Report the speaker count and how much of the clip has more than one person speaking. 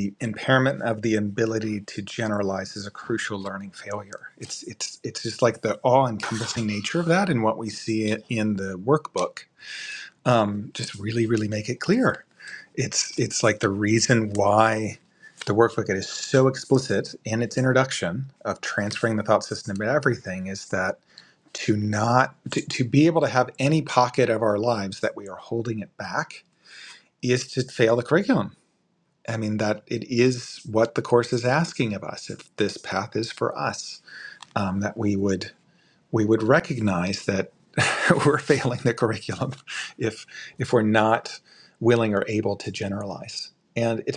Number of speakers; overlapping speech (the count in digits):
1, no overlap